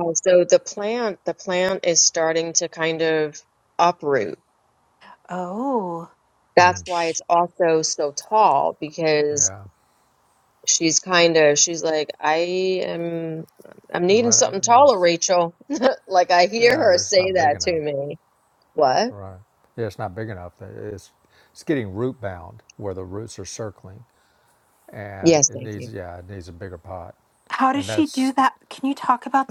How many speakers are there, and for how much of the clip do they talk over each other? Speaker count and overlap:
three, about 12%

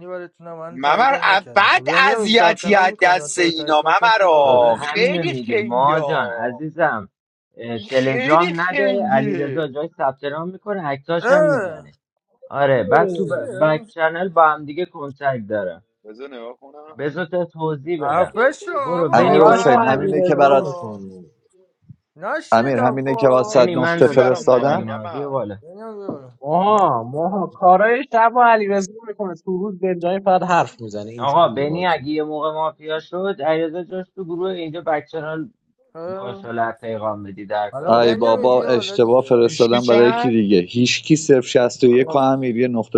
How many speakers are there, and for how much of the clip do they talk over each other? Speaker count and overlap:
five, about 43%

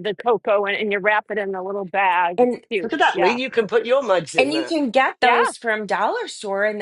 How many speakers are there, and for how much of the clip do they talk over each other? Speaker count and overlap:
three, about 18%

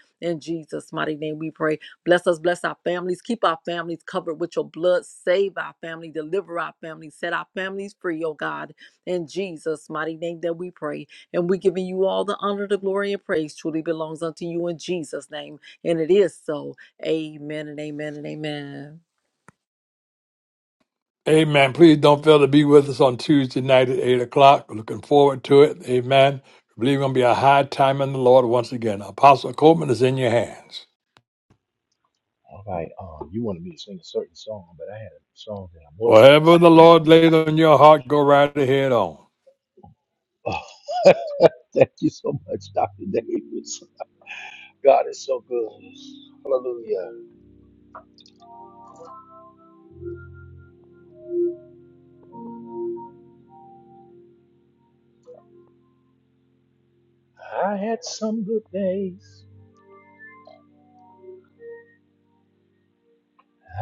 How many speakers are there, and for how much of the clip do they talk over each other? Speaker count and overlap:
three, under 1%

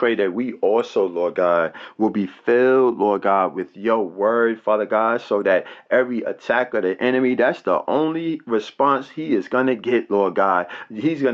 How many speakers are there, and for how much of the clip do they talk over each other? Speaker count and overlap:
one, no overlap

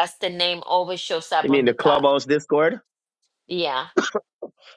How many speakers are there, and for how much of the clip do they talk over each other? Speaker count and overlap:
two, about 14%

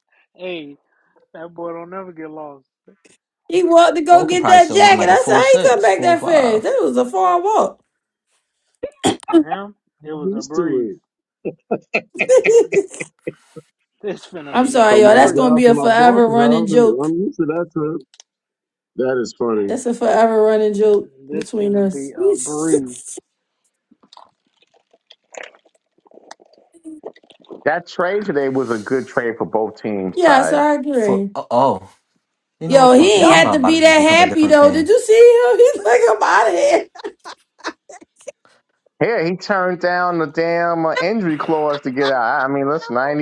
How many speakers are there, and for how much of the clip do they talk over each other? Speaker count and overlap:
five, about 21%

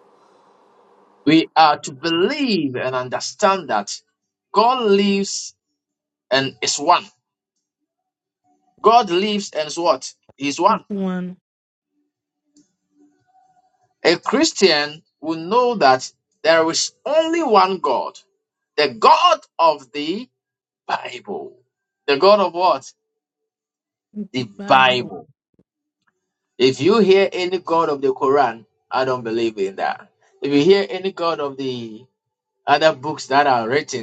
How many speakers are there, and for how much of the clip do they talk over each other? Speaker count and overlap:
two, about 2%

